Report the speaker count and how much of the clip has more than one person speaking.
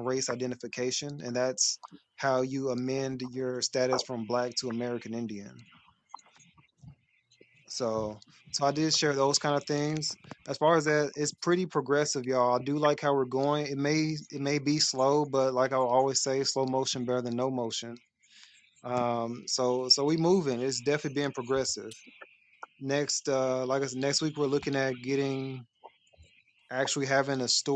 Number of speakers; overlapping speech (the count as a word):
one, no overlap